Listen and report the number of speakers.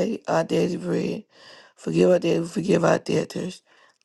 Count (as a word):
one